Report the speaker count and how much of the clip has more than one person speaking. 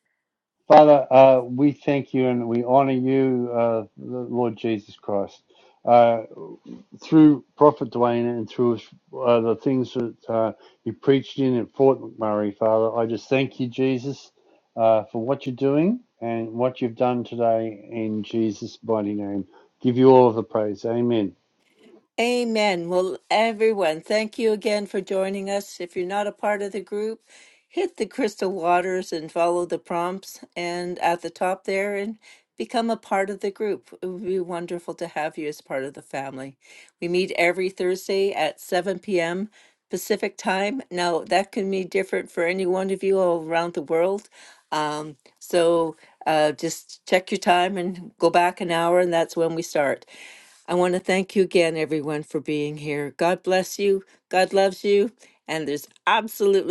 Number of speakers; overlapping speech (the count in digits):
2, no overlap